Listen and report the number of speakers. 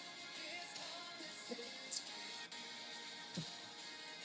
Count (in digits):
0